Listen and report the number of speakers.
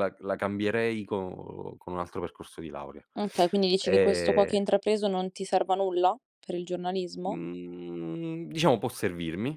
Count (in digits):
2